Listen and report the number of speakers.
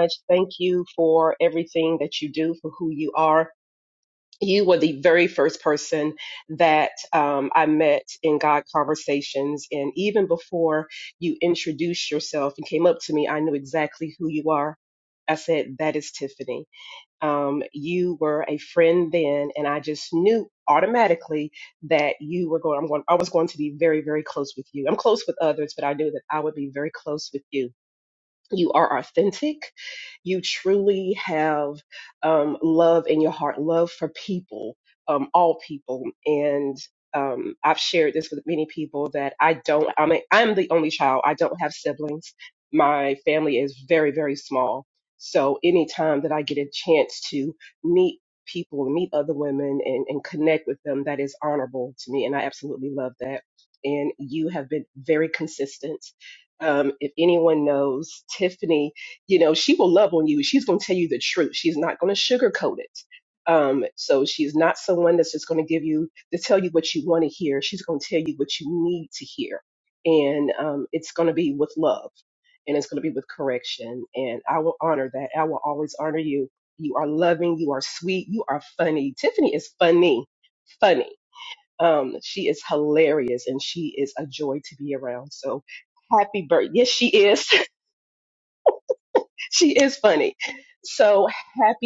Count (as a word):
one